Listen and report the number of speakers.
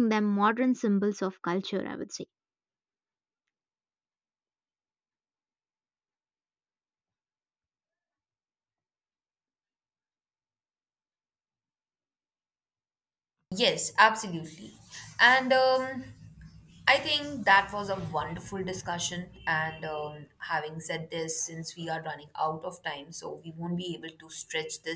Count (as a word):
two